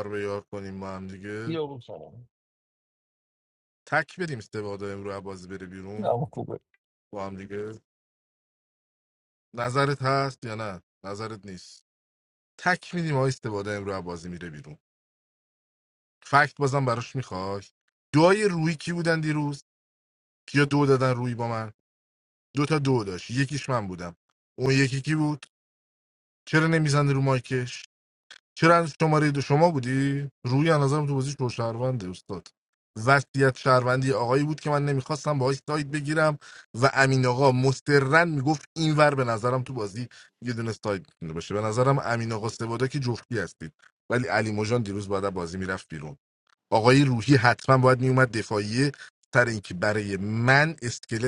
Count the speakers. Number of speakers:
two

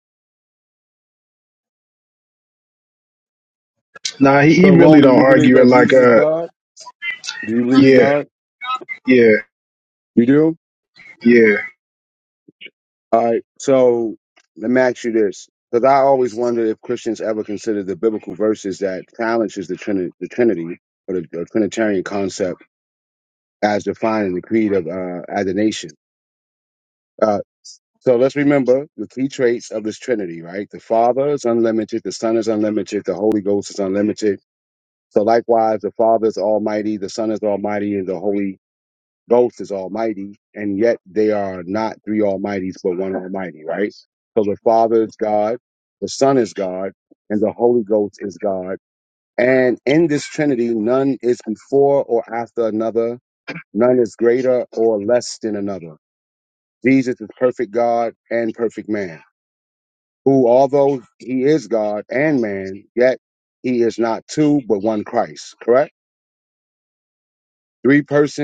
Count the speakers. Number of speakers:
two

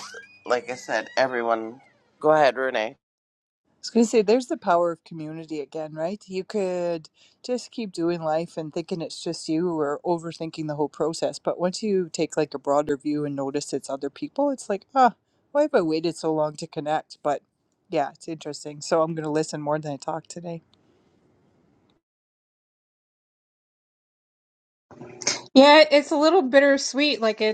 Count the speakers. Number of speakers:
three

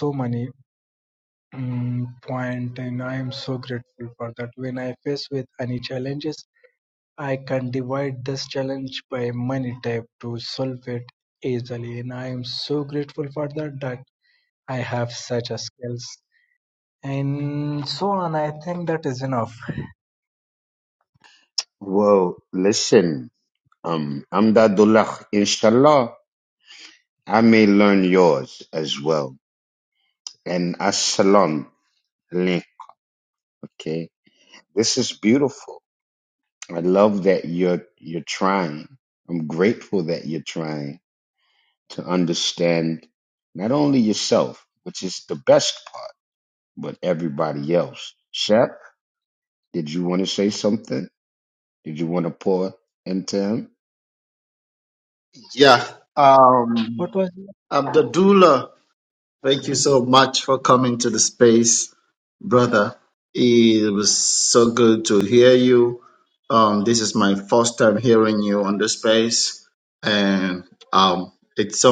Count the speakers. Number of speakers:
three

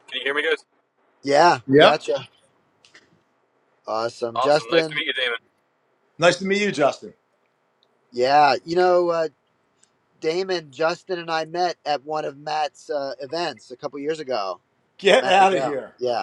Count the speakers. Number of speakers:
three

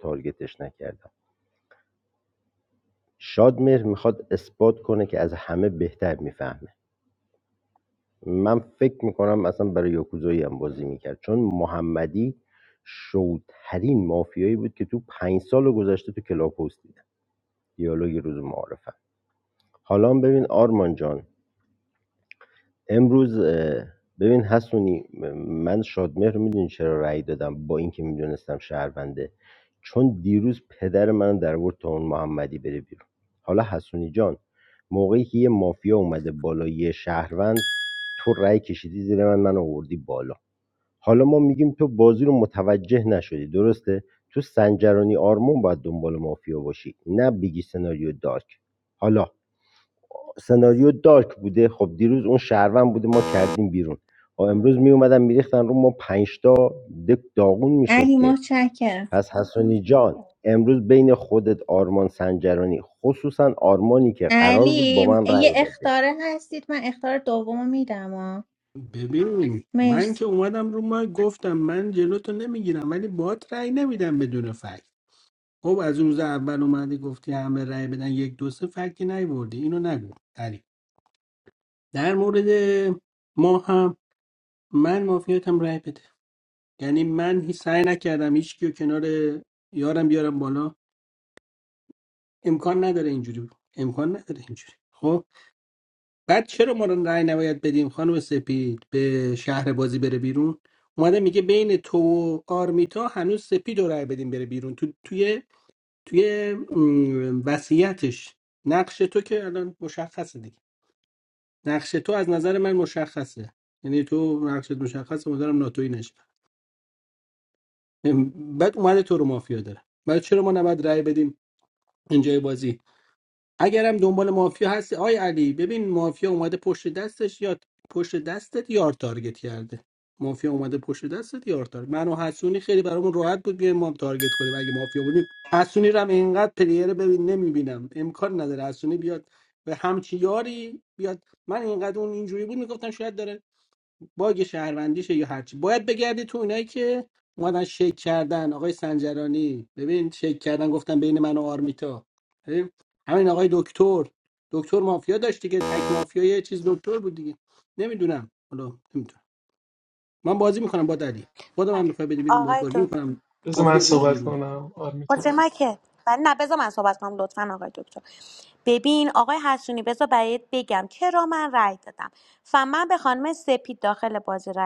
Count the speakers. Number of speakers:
five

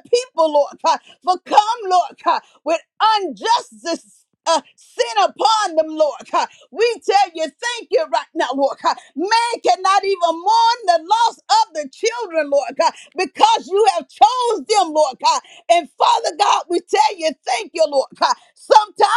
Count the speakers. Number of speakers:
one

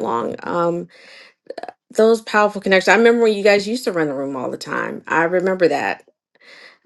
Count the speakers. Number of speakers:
one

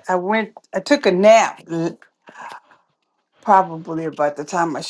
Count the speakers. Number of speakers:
one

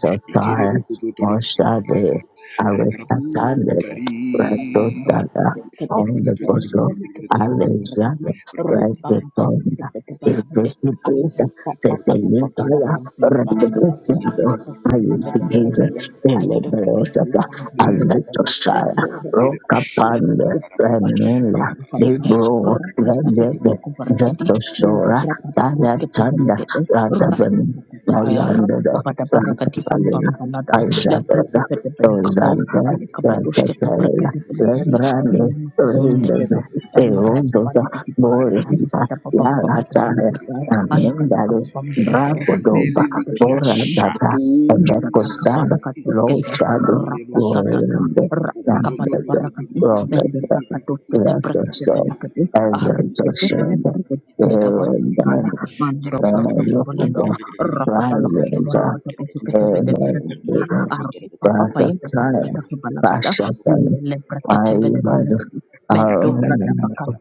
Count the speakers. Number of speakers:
three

